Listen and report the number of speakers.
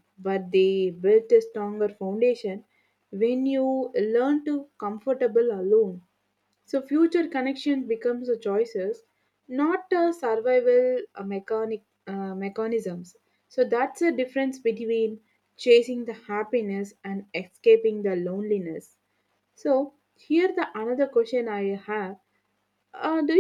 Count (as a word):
one